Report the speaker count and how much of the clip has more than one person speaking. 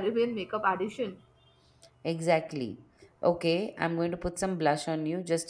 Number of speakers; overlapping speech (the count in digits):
2, no overlap